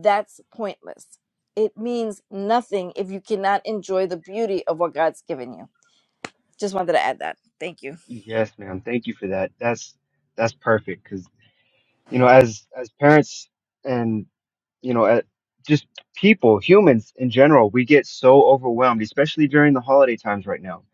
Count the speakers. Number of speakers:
2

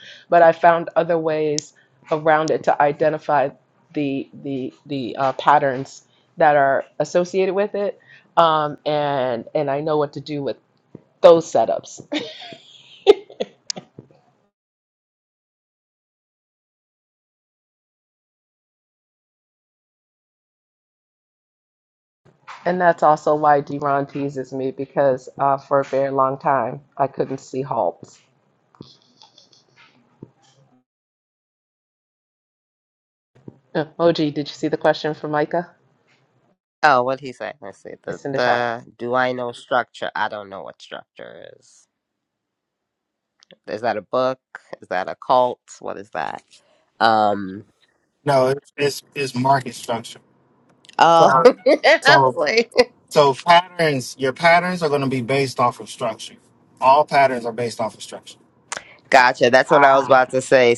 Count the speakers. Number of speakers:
3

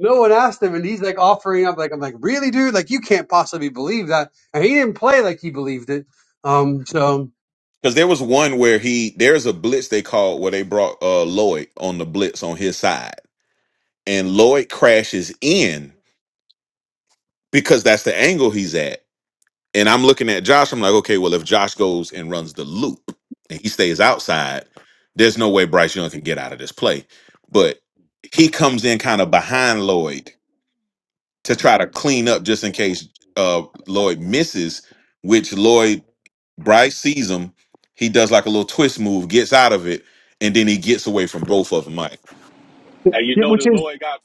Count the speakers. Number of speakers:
3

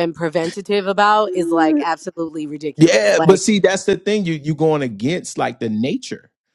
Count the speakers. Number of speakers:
2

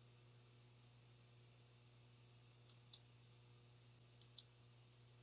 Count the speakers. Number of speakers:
0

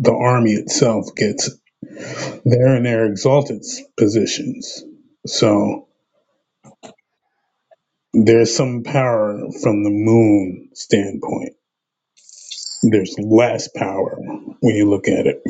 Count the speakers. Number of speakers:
1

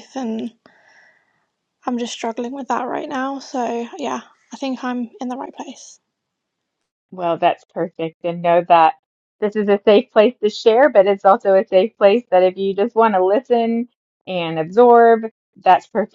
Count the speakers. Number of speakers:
2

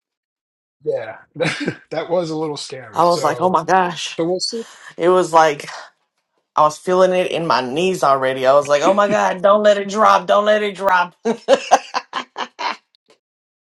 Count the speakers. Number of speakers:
2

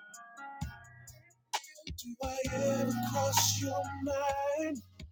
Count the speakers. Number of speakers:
1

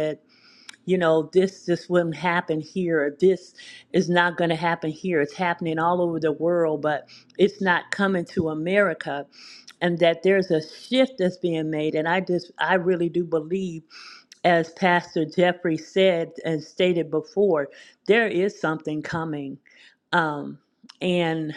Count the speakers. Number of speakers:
1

